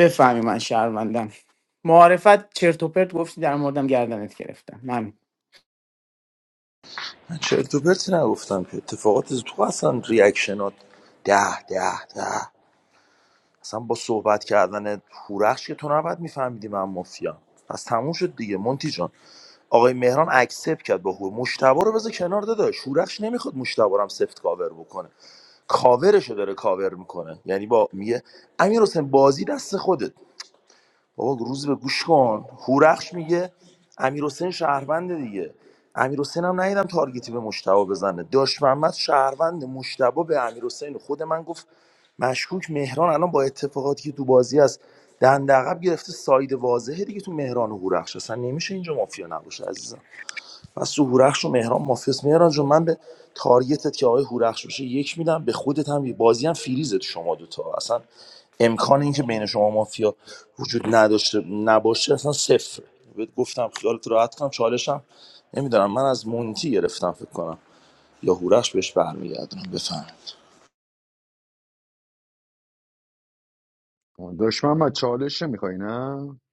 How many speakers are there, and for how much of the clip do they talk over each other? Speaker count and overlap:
three, no overlap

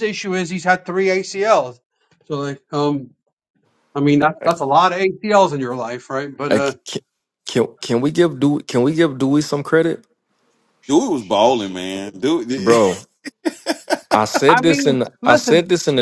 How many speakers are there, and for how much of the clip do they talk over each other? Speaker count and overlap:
three, about 8%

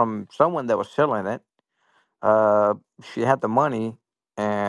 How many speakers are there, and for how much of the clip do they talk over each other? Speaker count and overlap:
one, no overlap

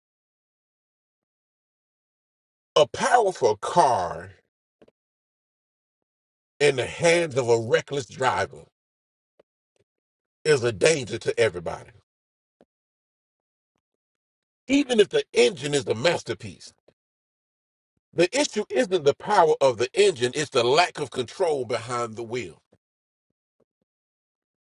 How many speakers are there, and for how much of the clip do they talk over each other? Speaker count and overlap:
one, no overlap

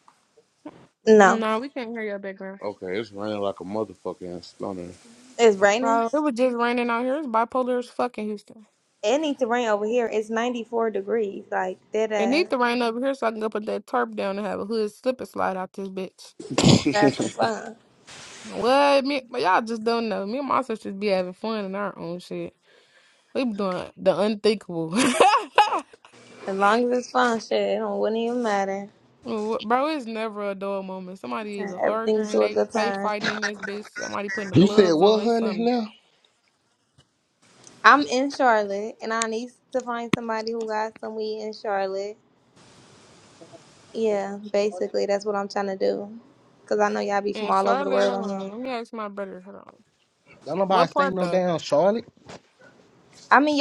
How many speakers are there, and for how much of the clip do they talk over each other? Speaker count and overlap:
four, about 10%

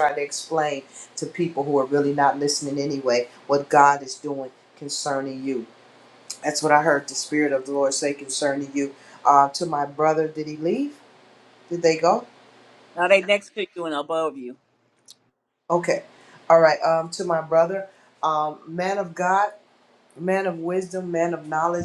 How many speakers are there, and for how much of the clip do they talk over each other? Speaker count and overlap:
two, no overlap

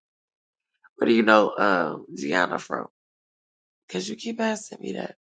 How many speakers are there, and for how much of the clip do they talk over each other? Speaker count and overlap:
one, no overlap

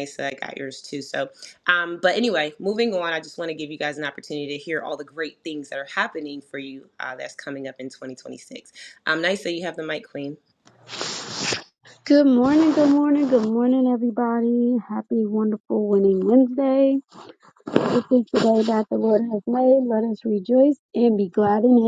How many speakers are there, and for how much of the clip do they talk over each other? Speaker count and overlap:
two, no overlap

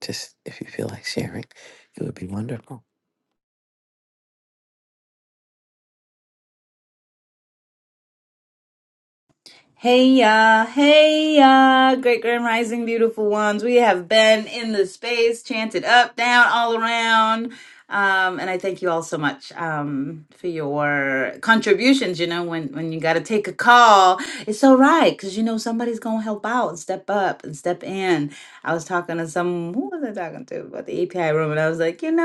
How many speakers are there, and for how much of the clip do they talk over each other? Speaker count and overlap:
two, no overlap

